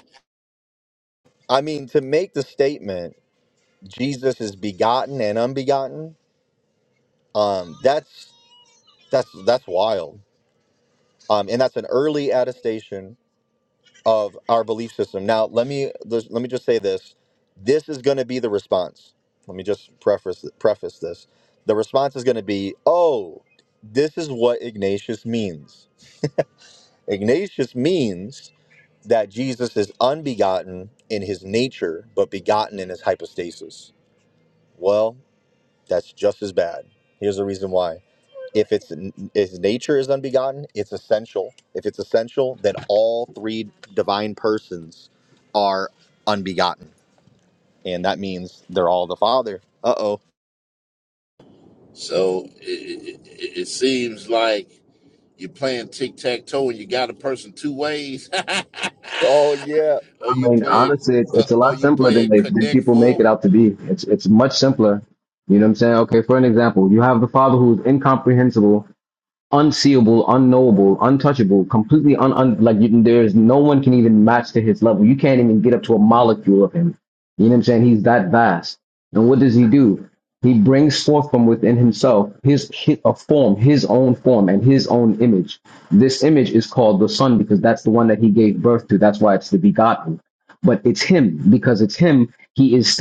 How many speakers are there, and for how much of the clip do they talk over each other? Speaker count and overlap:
3, about 3%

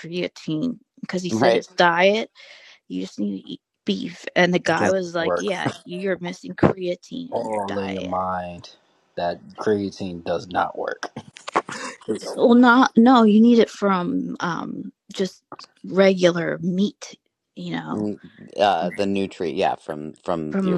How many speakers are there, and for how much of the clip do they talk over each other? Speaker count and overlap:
3, about 13%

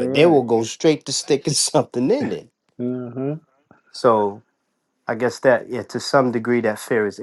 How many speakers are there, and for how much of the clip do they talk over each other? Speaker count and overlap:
2, about 6%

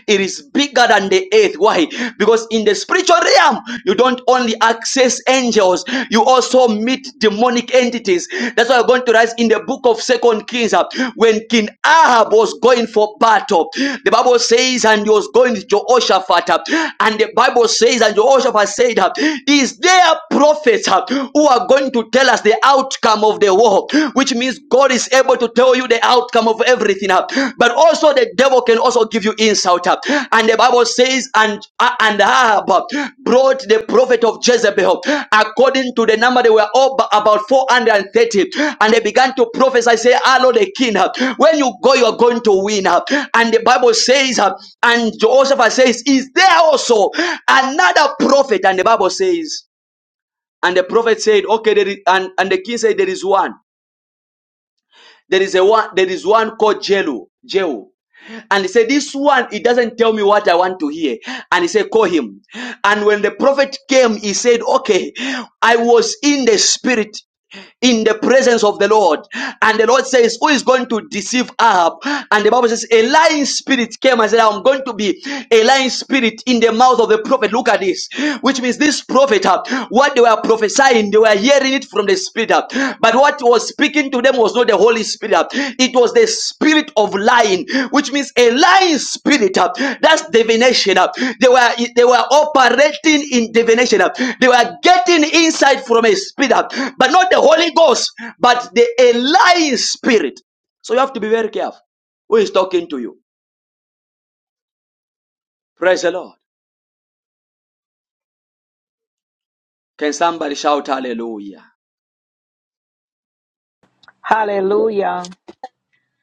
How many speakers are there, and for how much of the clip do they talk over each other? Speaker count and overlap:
2, no overlap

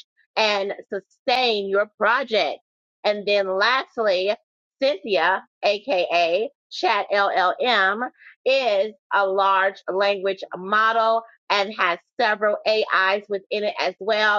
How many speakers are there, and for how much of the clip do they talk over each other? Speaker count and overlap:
1, no overlap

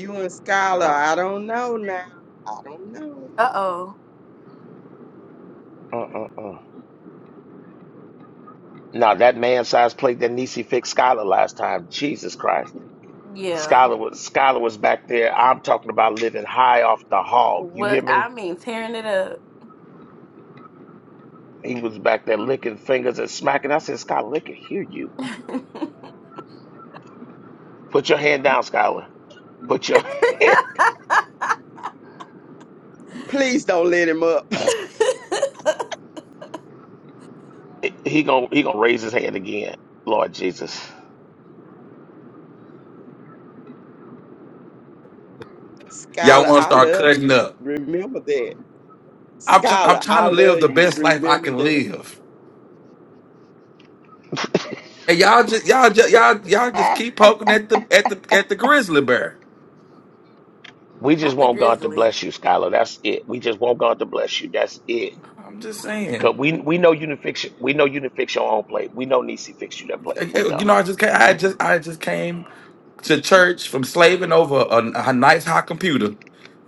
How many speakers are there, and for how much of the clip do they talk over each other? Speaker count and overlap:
4, about 8%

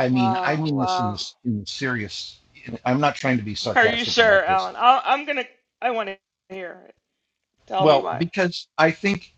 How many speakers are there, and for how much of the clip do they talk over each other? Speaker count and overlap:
2, about 26%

